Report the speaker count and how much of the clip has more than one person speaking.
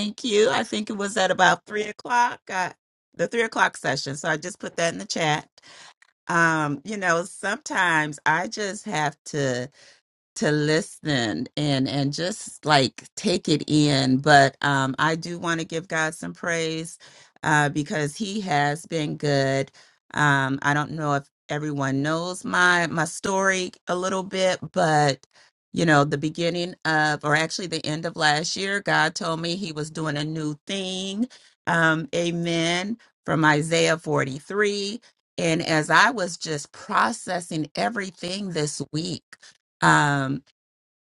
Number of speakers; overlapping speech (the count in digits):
1, no overlap